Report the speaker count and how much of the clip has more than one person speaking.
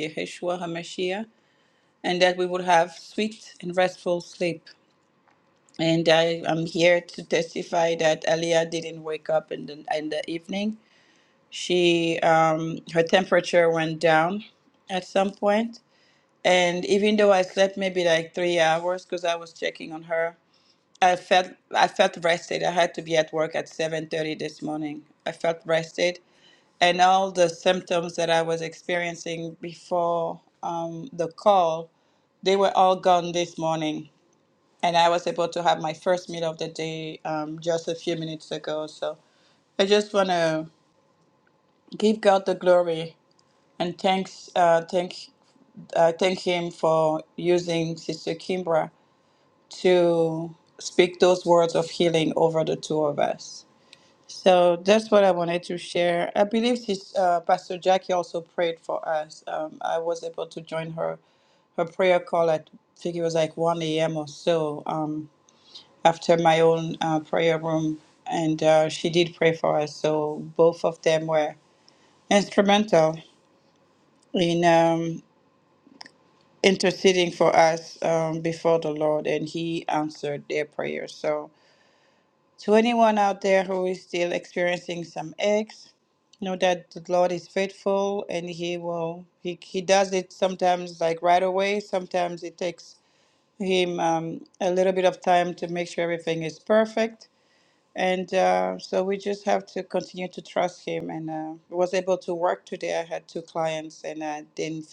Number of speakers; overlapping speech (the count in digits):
1, no overlap